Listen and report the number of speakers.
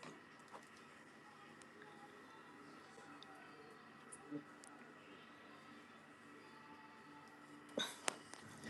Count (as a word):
zero